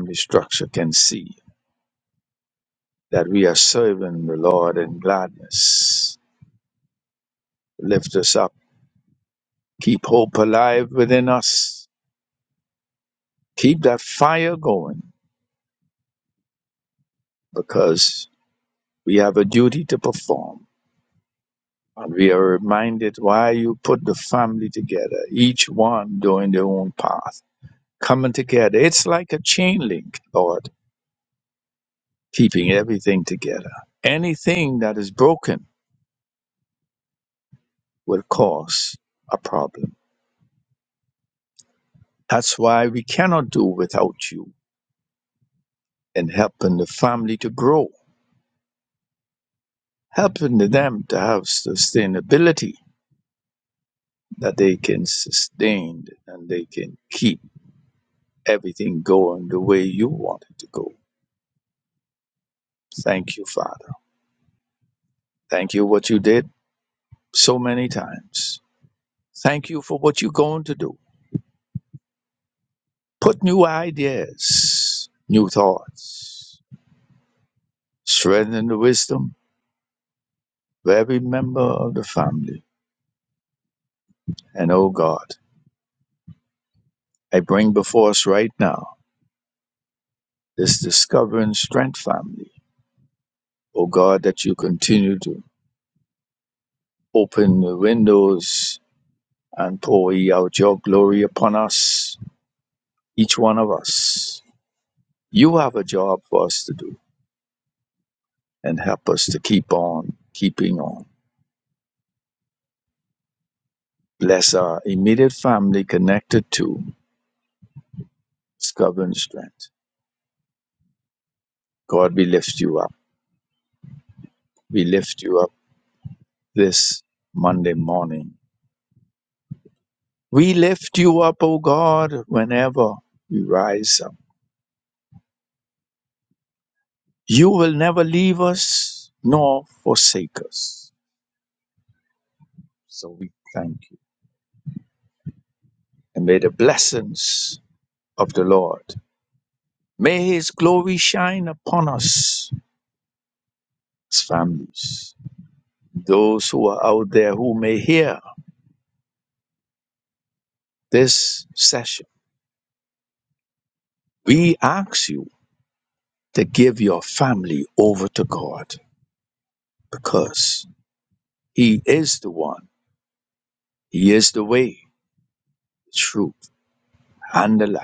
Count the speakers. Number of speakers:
one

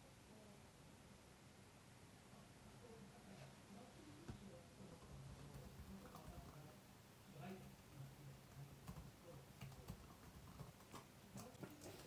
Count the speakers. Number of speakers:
zero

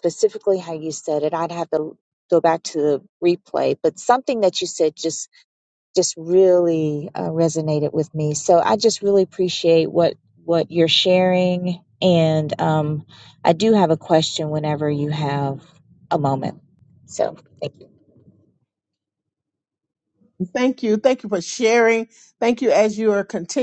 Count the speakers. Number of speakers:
two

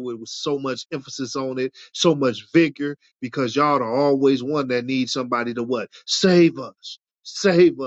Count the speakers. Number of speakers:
one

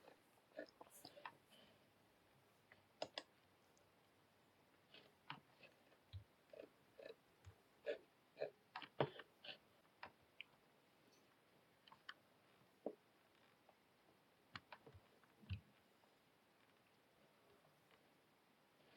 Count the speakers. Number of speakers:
zero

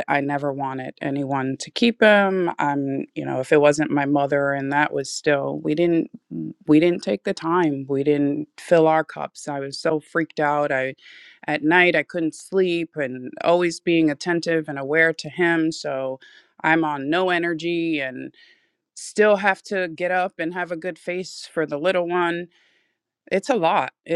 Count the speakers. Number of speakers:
one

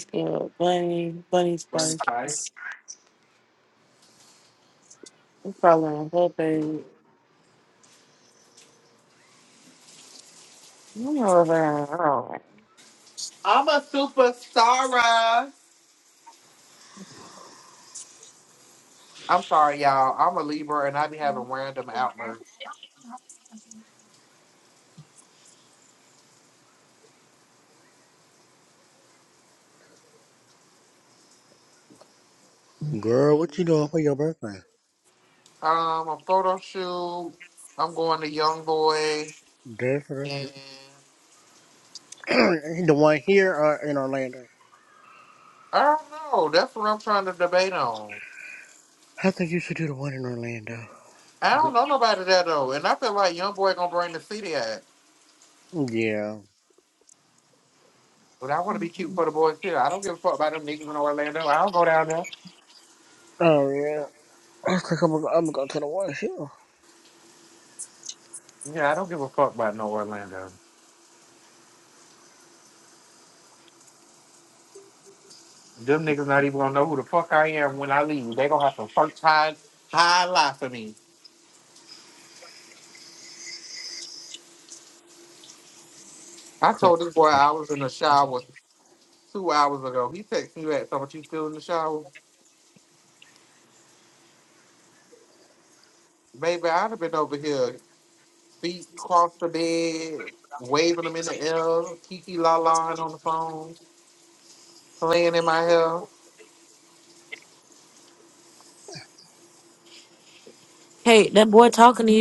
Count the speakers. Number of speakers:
four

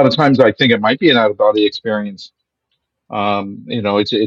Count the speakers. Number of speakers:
one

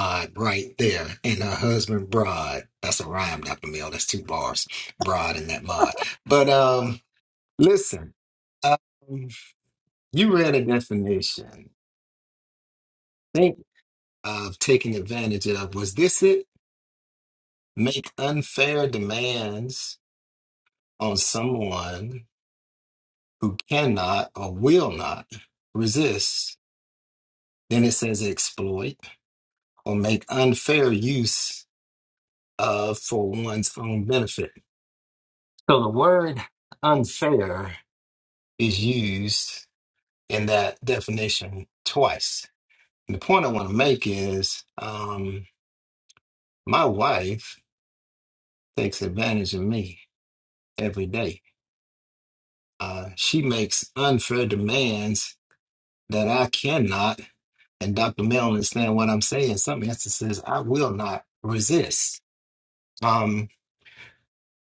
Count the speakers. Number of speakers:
one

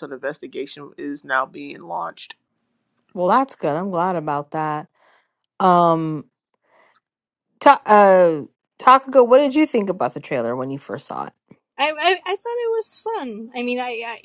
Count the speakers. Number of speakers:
three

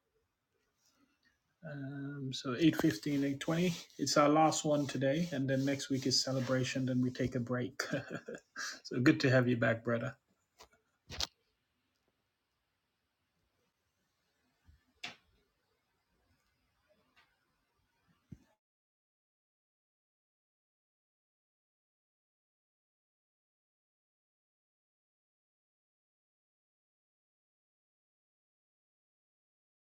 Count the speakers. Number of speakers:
one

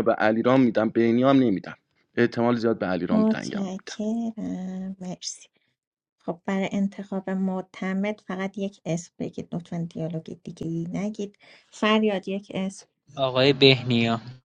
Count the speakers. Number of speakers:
three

